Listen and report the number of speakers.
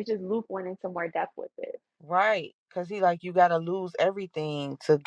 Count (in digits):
2